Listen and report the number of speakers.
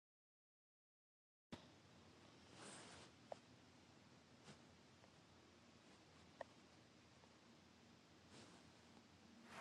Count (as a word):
zero